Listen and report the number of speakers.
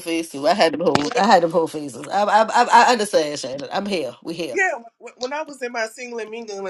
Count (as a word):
two